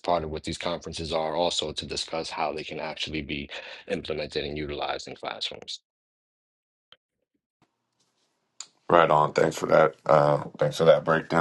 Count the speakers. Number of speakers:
2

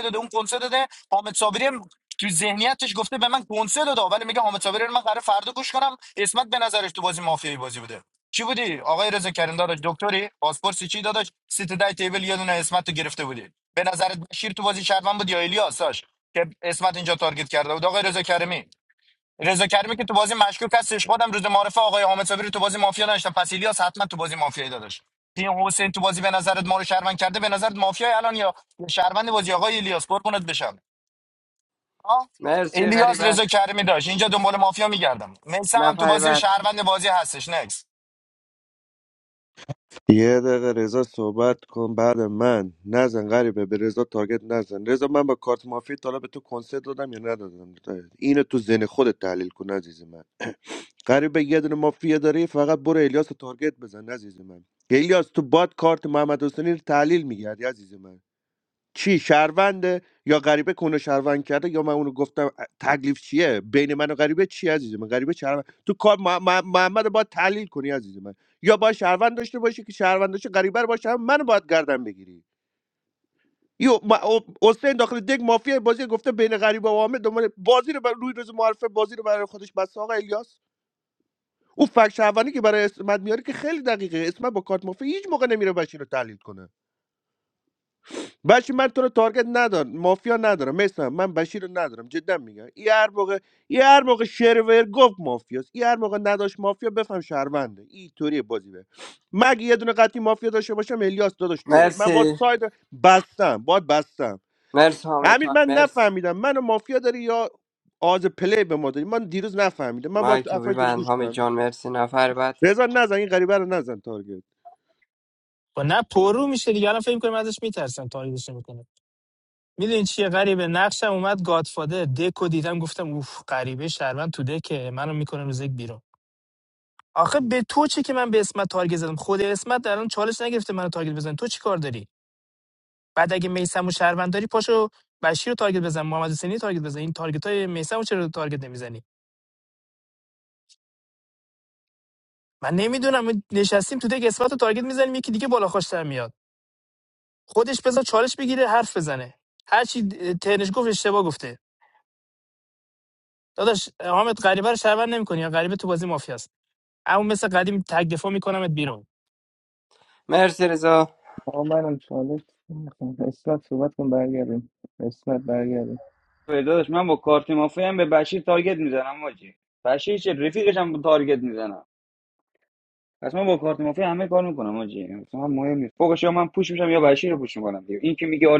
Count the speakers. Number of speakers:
6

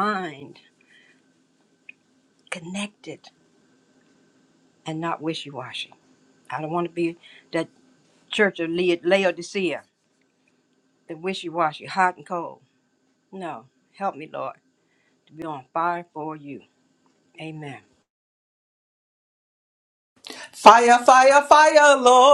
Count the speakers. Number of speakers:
2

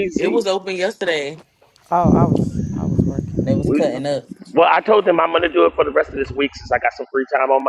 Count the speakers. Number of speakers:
3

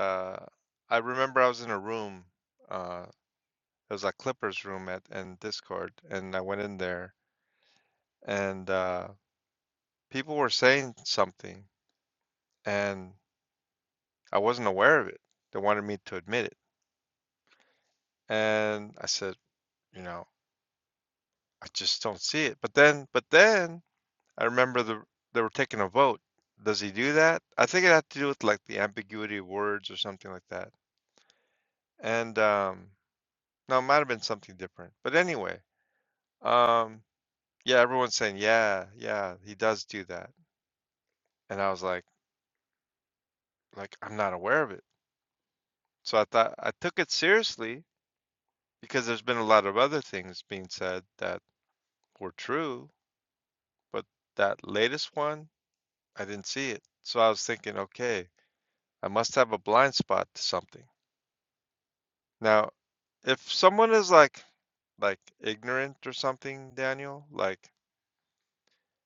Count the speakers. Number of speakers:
1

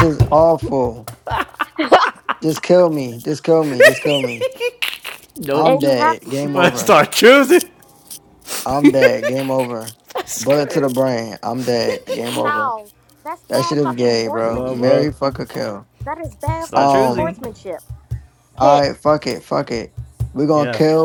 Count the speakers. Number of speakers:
3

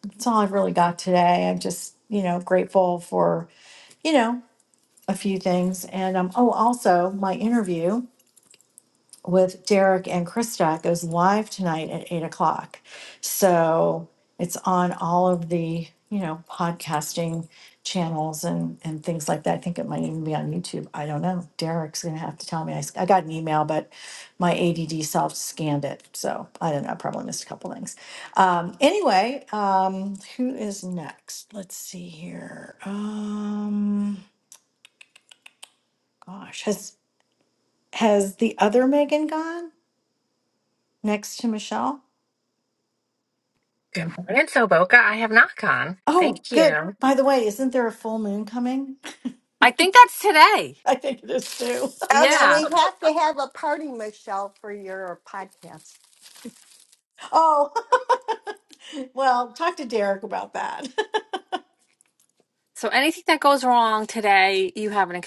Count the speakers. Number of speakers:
3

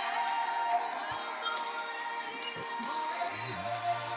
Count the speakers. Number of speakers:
0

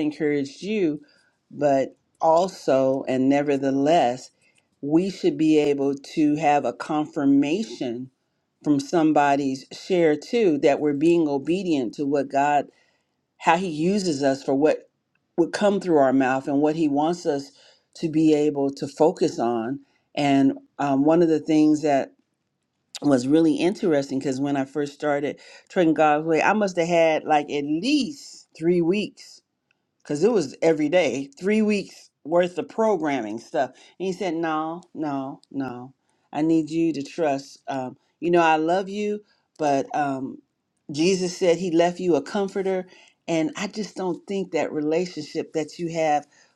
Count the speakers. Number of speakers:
1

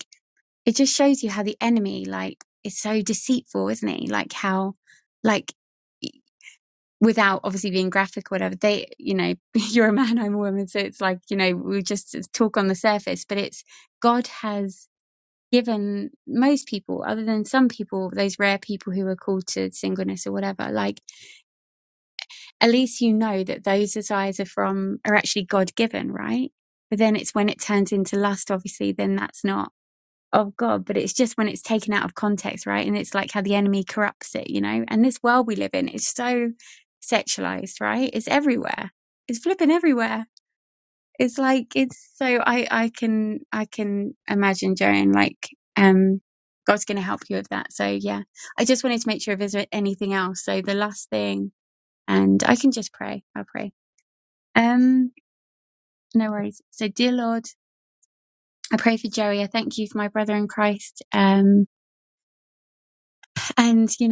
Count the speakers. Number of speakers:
1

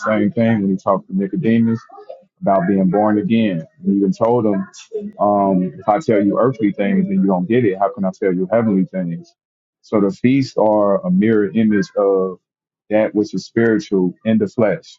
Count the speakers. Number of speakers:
1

